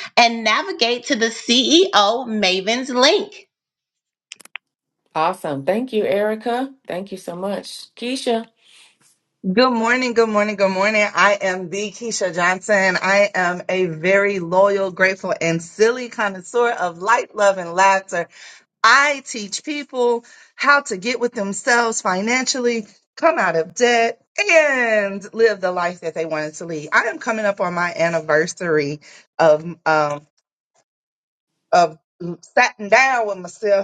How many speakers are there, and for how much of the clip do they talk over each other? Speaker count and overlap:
3, no overlap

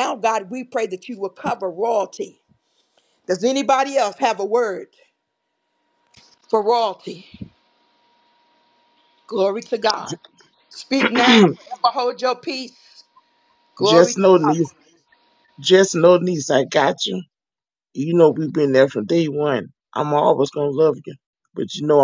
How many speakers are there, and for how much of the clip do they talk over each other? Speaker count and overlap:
2, about 3%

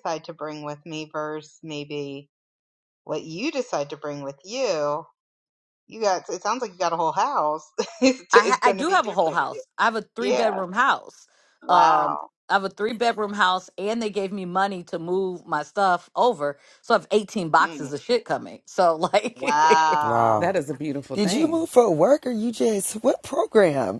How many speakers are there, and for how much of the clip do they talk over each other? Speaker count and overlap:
4, about 15%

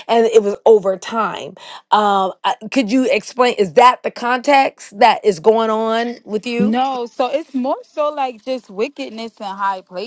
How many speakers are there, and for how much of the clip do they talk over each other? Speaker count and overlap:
2, about 1%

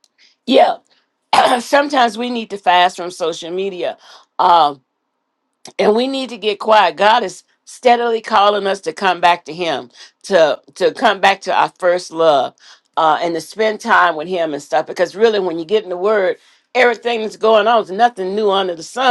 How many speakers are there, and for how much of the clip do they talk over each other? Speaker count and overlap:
1, no overlap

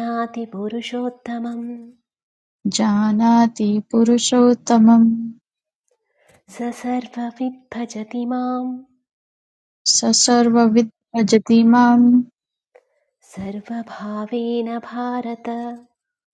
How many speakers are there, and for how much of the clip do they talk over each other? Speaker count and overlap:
2, no overlap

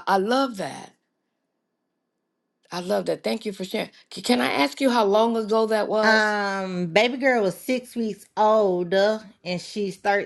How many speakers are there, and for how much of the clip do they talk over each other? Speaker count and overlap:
2, about 2%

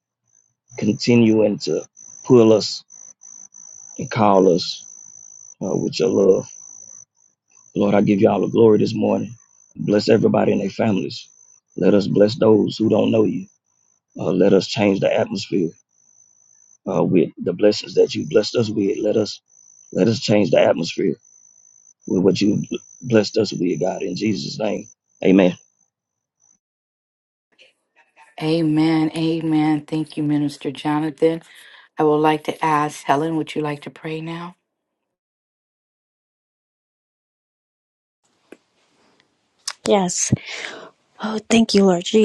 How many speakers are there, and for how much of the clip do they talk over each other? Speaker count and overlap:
3, no overlap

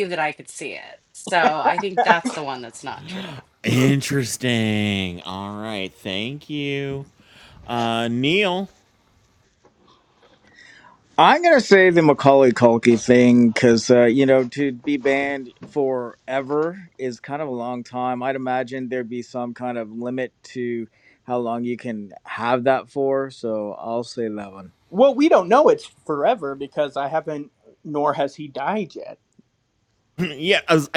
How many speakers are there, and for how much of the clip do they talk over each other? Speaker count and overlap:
4, no overlap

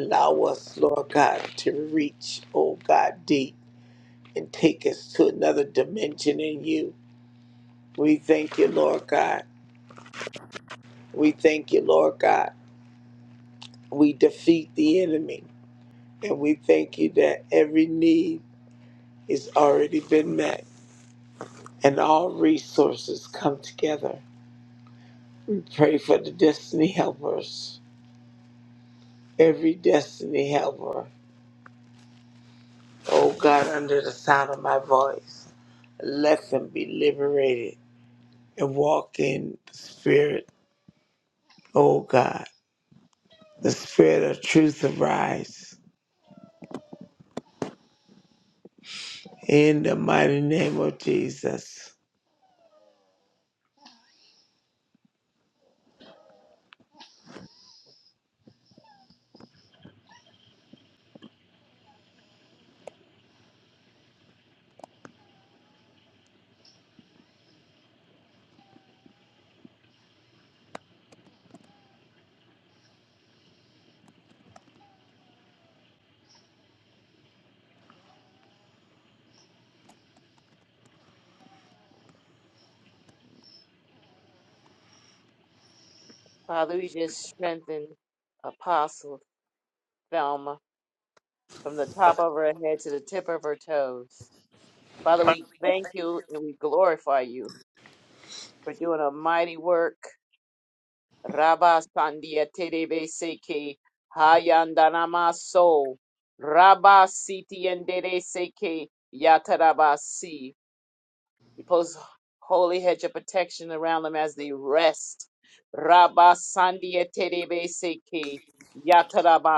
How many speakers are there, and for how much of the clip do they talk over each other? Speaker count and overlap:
2, no overlap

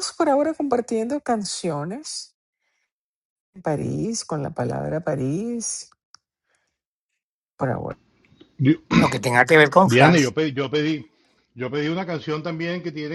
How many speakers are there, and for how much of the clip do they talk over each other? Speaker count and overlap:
3, about 2%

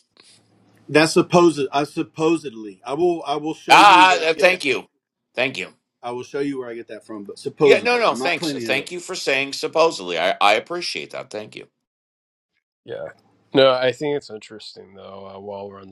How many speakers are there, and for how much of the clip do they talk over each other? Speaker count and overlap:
3, about 13%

